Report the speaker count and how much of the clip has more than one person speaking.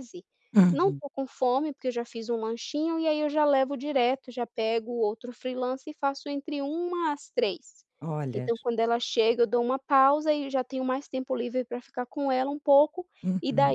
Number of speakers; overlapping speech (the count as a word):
two, about 6%